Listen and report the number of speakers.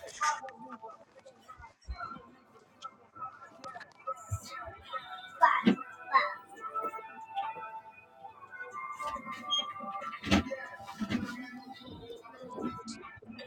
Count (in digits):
0